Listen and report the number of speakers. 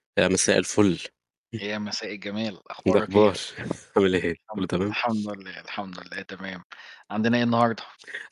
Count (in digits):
2